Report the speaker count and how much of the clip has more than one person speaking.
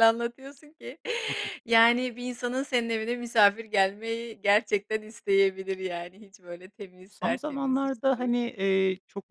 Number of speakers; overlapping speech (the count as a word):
two, about 12%